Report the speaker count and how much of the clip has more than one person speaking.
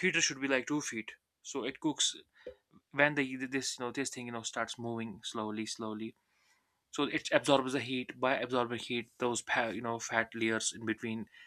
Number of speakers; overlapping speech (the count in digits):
1, no overlap